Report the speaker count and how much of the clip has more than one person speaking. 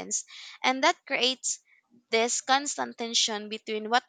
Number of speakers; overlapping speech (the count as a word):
one, no overlap